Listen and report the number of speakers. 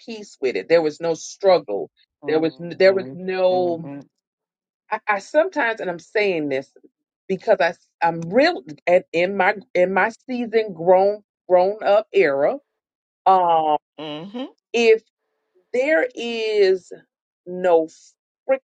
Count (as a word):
two